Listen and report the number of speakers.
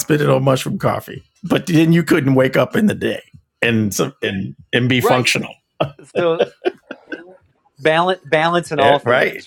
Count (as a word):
two